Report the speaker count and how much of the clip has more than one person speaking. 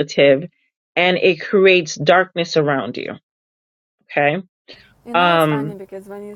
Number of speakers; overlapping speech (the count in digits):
2, about 9%